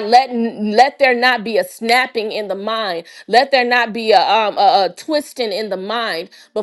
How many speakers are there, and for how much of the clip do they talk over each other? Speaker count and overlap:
1, no overlap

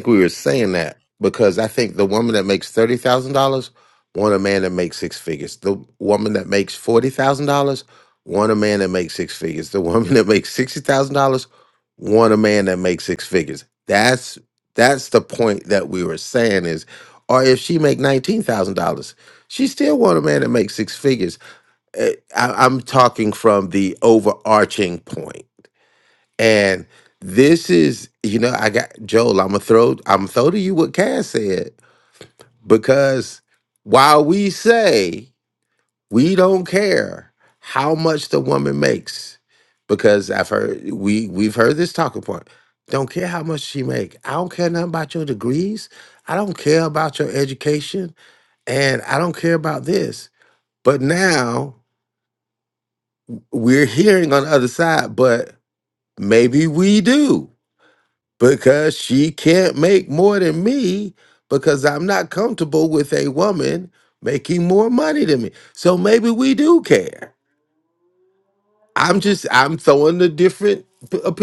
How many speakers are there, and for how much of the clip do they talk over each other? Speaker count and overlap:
1, no overlap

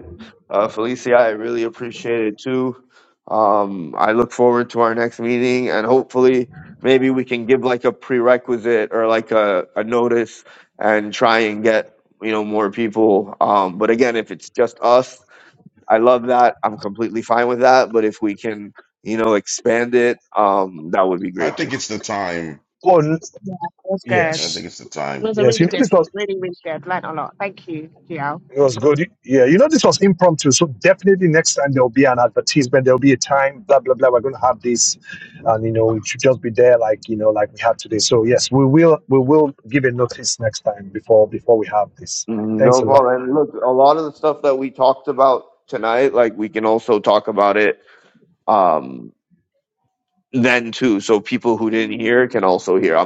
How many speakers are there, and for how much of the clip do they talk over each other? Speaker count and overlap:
4, about 4%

